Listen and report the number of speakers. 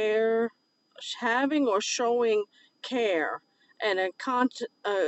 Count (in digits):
1